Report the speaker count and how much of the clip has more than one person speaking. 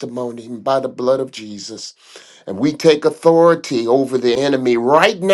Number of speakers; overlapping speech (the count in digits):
1, no overlap